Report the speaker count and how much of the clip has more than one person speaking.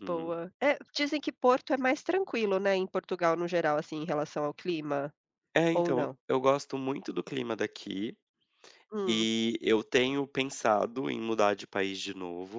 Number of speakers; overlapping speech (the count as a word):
two, about 7%